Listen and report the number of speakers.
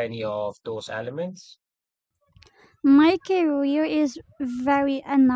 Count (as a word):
two